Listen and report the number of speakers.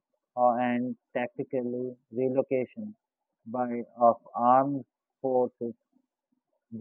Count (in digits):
1